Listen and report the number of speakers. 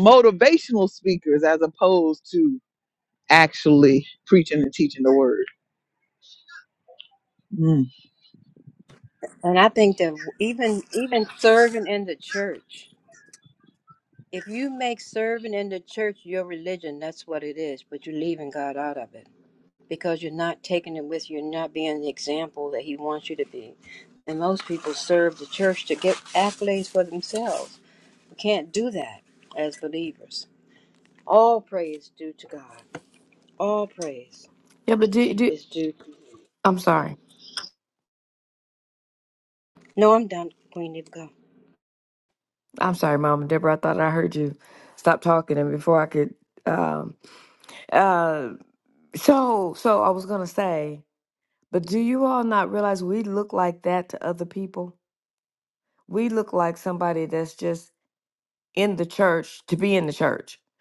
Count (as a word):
three